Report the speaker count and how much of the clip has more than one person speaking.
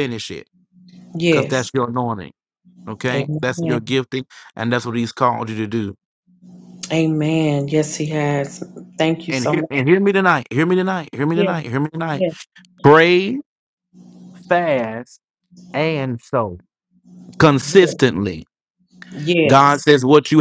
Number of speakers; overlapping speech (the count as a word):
two, about 11%